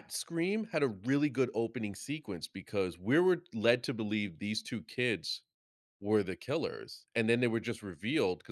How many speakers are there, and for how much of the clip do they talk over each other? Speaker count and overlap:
1, no overlap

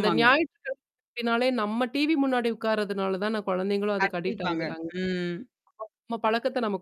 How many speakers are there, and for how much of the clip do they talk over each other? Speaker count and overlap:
2, about 18%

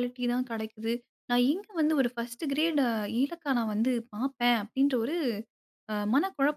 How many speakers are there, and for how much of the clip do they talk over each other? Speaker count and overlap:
1, no overlap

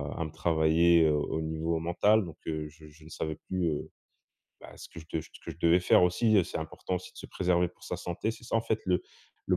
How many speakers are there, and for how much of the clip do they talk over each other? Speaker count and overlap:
1, no overlap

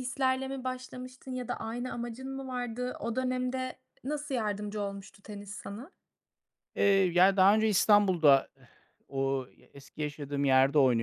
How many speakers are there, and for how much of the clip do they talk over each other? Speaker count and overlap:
2, no overlap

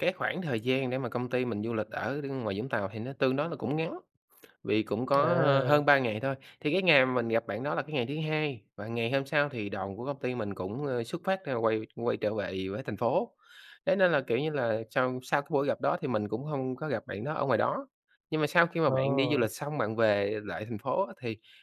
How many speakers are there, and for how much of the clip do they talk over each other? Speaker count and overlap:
2, about 4%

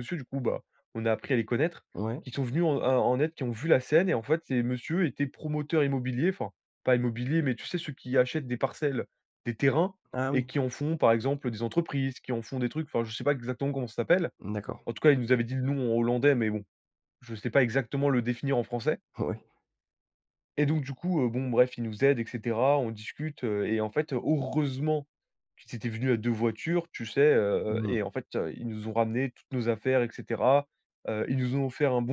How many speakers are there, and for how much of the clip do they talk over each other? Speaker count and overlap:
2, about 1%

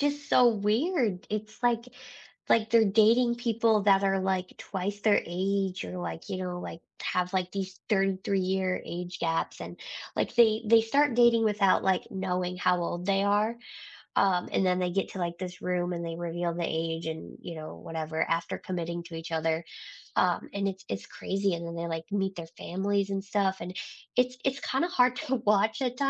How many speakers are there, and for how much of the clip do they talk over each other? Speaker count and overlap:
1, no overlap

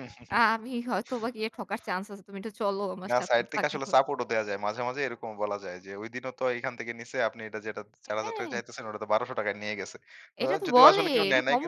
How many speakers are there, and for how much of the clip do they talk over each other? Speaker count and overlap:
2, about 21%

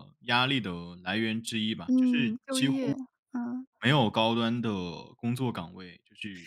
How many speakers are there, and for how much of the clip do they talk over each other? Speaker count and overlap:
2, about 12%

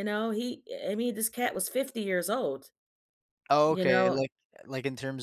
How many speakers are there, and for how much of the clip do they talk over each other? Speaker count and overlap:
2, about 10%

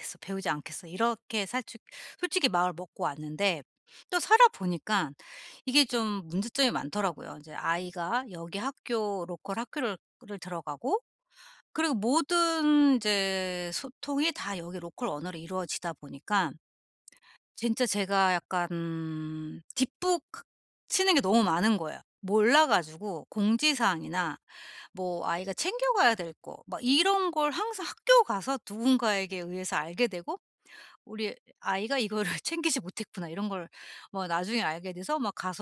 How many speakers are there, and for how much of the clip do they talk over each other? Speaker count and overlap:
1, no overlap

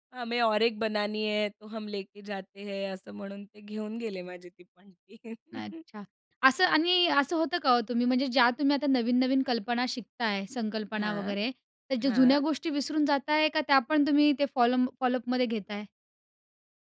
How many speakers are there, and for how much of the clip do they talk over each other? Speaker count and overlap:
2, about 5%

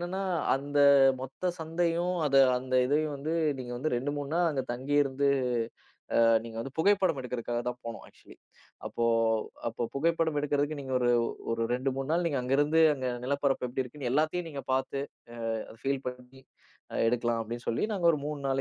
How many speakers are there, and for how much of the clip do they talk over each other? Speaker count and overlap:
1, no overlap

